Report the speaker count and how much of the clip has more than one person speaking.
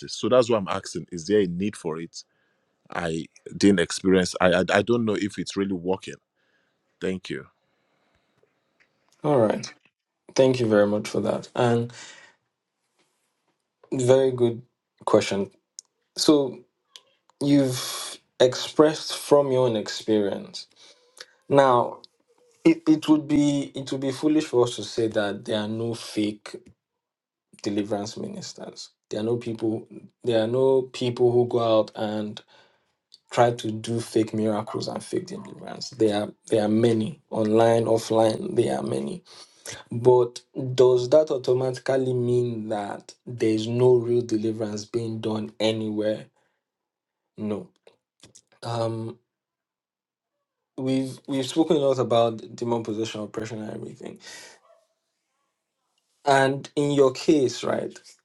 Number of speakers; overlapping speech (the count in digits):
2, no overlap